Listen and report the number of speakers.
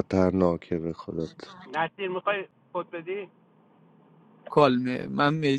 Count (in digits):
3